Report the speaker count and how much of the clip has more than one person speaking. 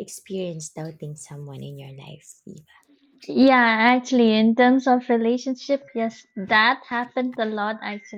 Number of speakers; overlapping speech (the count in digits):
2, no overlap